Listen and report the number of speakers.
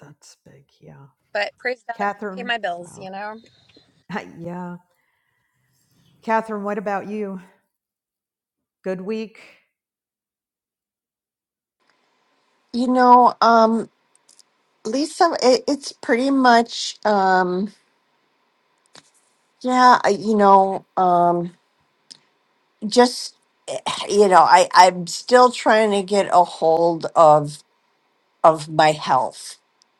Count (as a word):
three